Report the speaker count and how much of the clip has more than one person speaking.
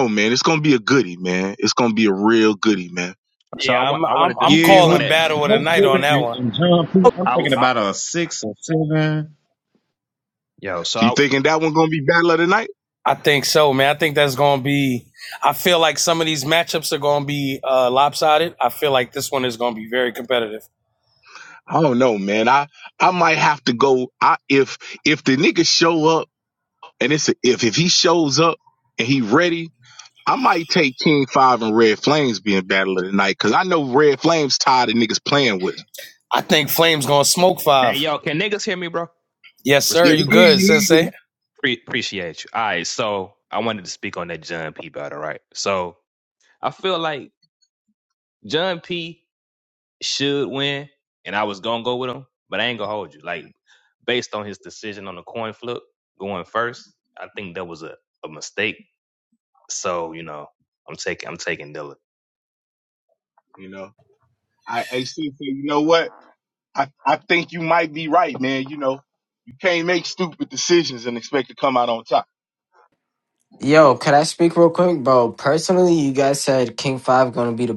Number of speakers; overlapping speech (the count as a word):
five, about 6%